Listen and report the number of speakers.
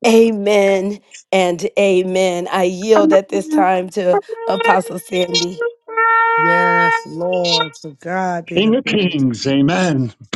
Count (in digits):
3